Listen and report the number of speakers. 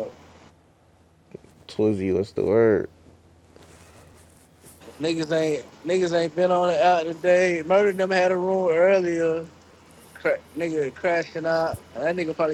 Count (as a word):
two